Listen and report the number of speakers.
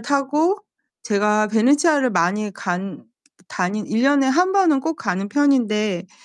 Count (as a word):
one